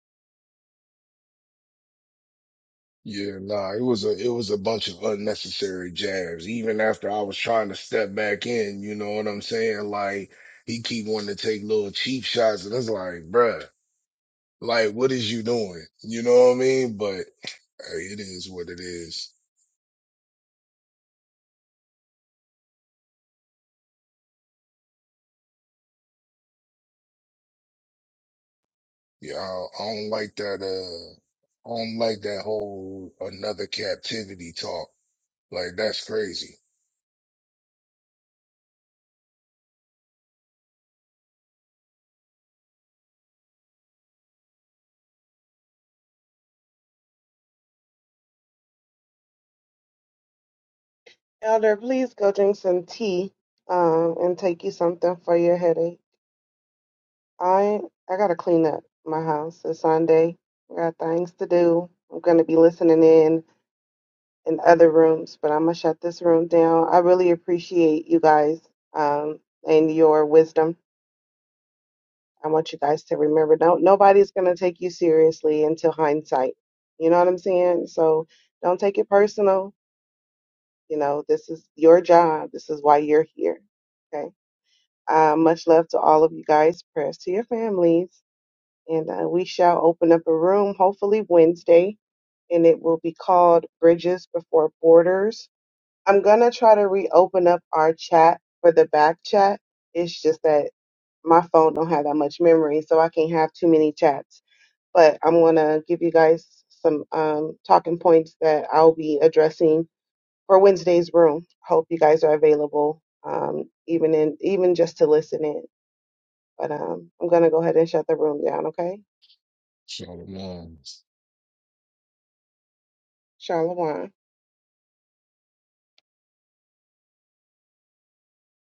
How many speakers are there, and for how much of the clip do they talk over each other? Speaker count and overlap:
2, no overlap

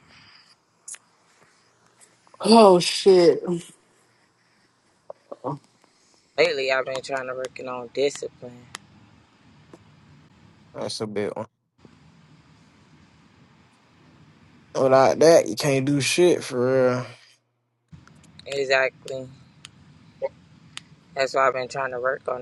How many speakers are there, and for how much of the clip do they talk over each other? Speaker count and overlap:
3, no overlap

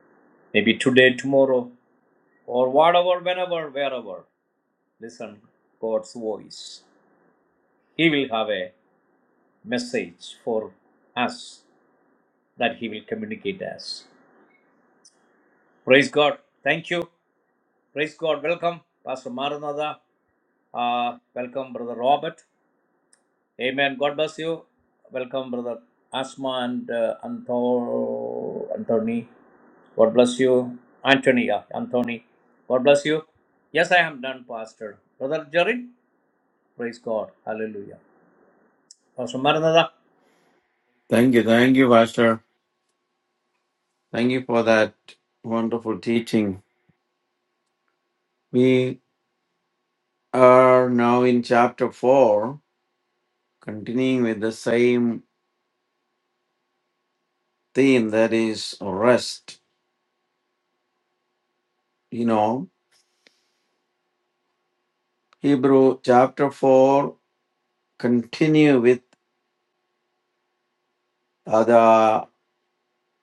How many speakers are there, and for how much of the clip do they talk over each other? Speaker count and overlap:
2, no overlap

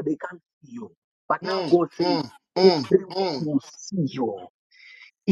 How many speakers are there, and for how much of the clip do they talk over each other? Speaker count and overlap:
2, about 23%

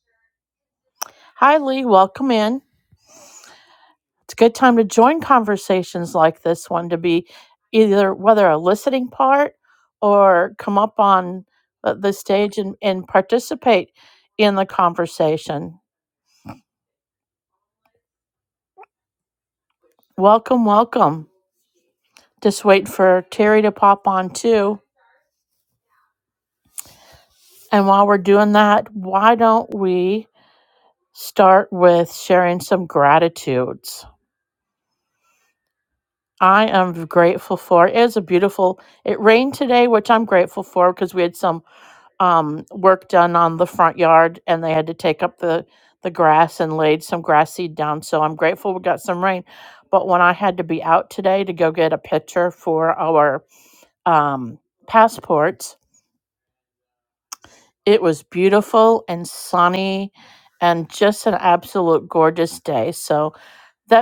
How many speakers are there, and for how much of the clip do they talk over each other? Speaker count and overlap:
1, no overlap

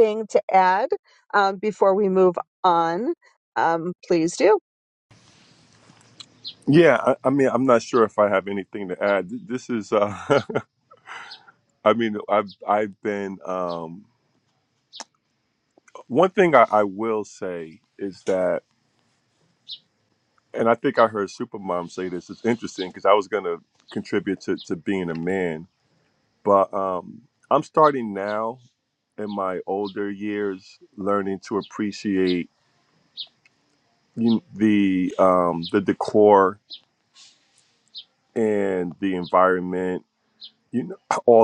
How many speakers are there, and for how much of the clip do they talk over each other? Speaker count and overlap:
2, no overlap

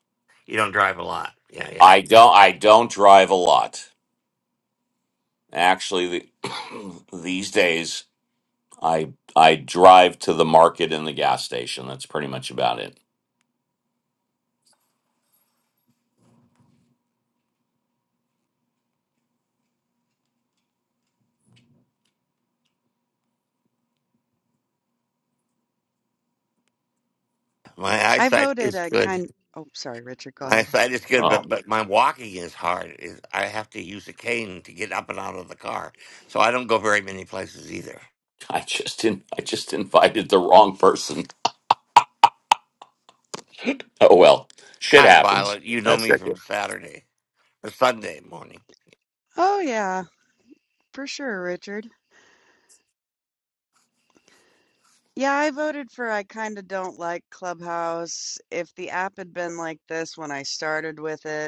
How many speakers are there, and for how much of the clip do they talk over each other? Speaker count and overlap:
3, about 4%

